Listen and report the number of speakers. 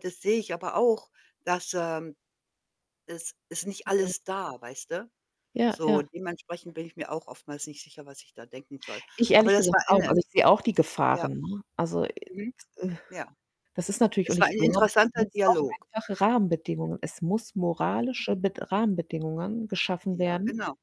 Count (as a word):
two